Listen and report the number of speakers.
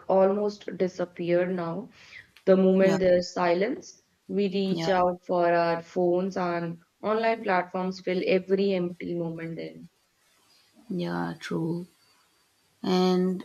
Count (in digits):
2